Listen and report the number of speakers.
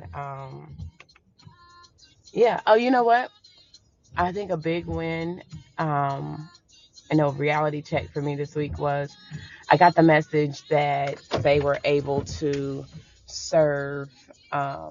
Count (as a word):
one